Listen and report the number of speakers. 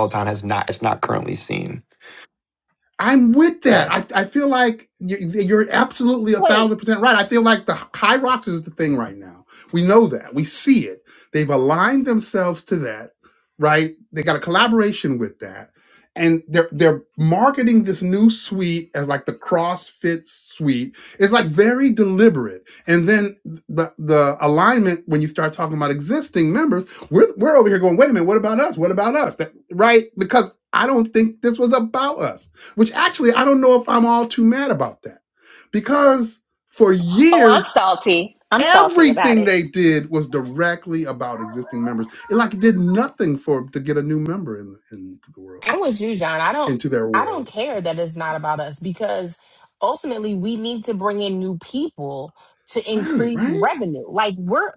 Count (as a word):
four